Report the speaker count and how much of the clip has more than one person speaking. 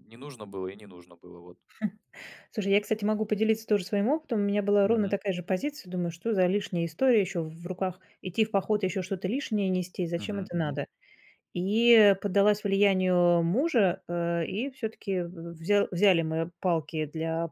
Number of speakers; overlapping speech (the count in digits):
2, about 5%